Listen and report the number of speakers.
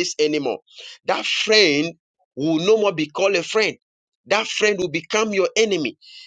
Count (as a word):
one